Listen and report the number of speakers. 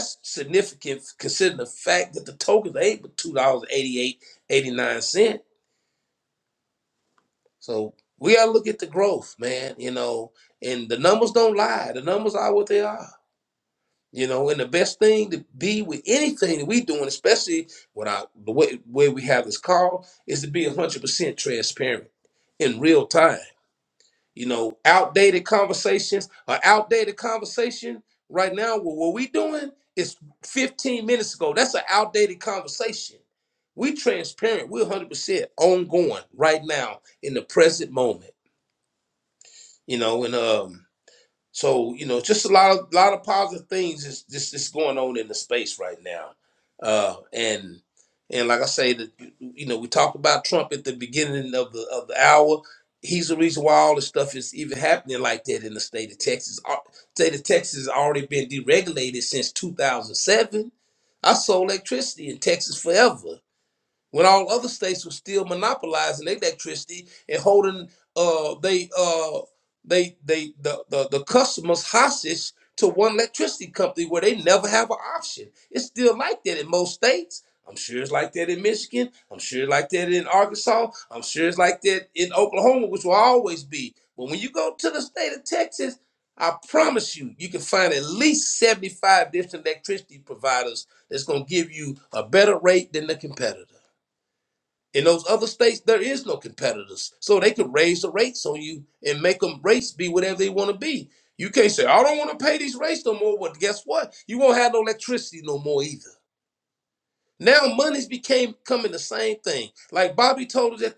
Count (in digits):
1